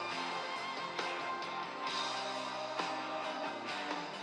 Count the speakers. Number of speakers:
zero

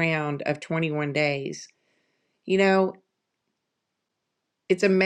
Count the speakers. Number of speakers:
one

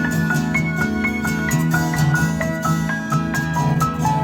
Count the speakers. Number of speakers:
zero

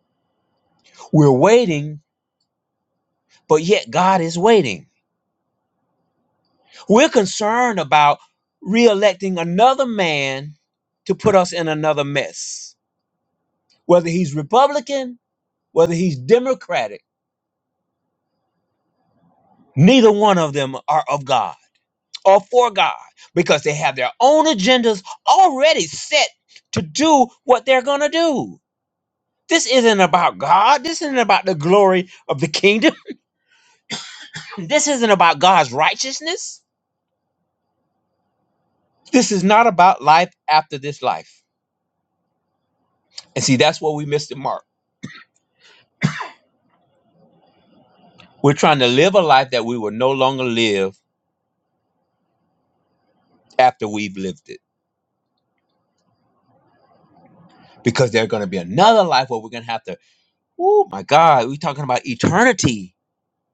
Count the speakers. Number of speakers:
one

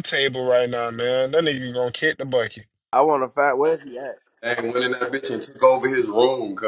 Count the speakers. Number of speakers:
three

